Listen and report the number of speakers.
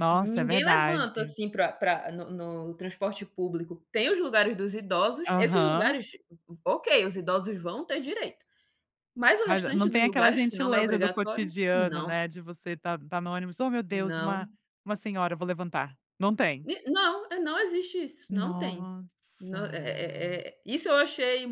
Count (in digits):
2